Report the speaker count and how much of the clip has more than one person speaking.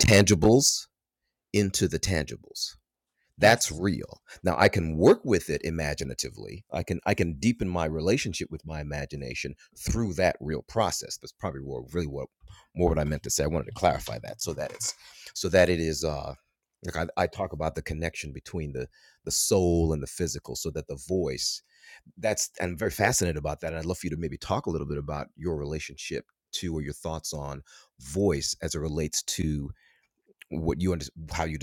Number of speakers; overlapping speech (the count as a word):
one, no overlap